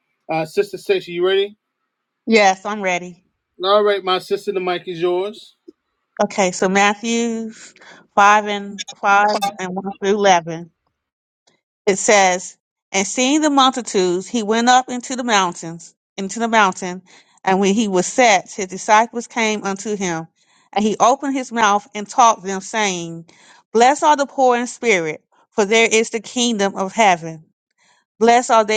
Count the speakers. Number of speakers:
two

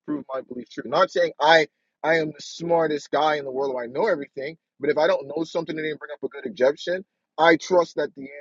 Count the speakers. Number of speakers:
one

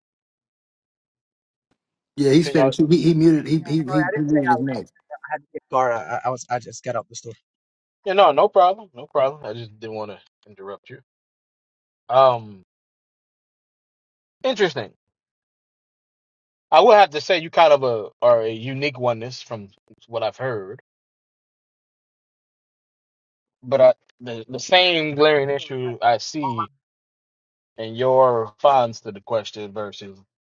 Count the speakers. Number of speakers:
three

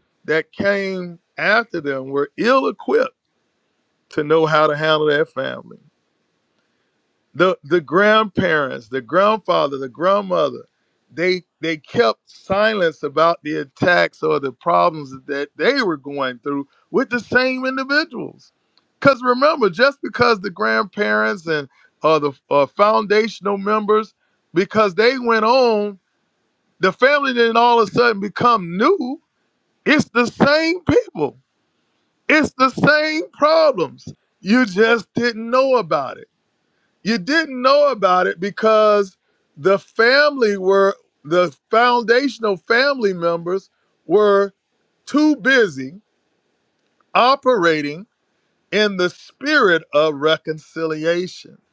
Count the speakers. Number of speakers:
one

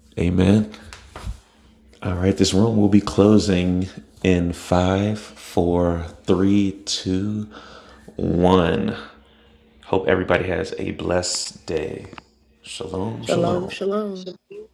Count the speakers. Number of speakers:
two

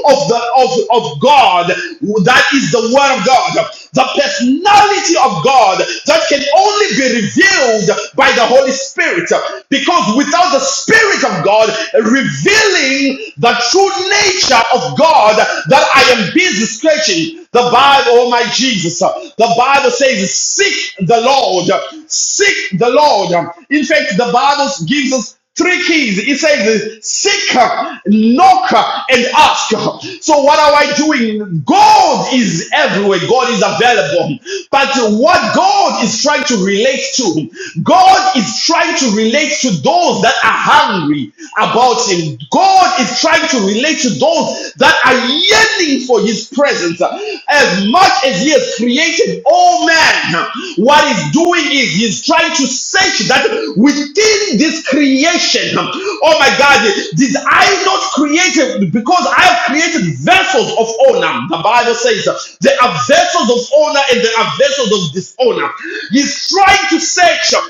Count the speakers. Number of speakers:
one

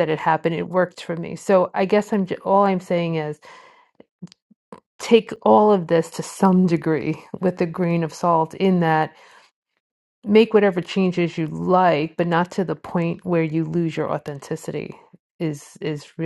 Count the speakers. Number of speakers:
one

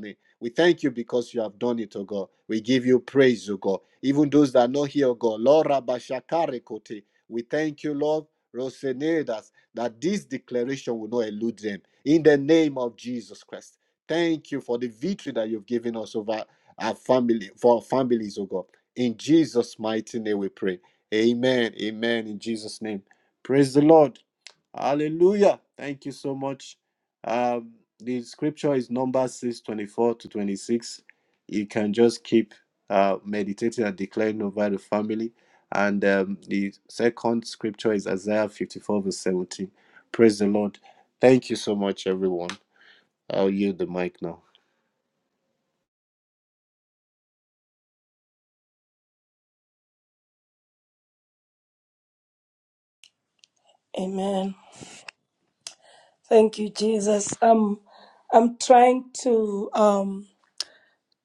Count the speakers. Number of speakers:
two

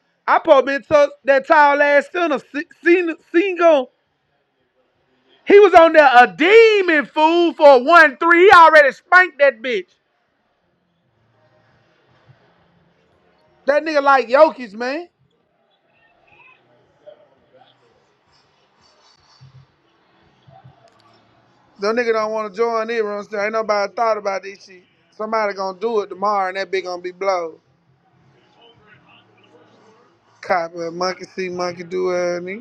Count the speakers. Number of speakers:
one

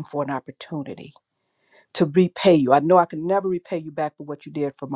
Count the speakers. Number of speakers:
one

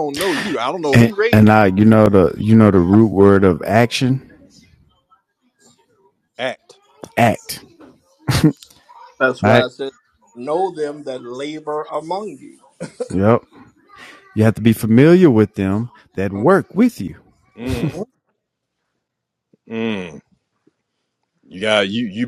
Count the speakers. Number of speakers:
three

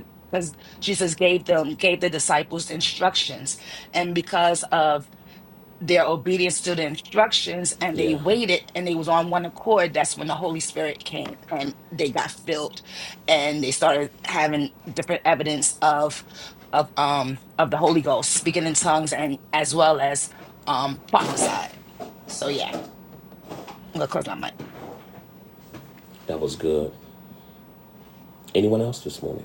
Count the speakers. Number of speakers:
two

